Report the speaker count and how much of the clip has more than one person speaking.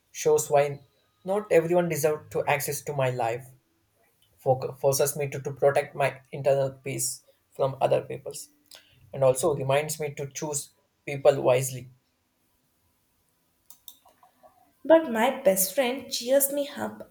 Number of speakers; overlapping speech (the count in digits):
2, no overlap